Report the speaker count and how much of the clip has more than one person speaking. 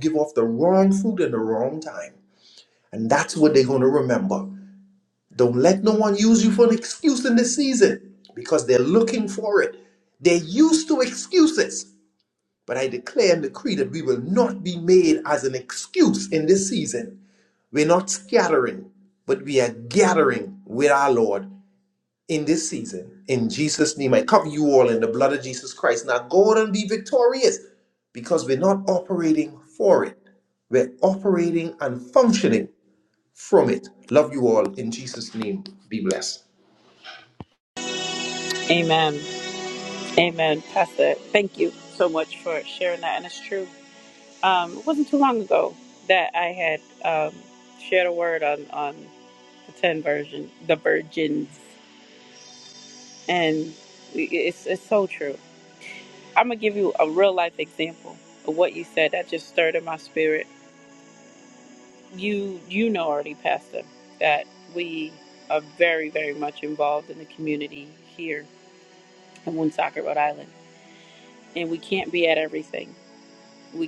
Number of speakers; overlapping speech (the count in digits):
2, no overlap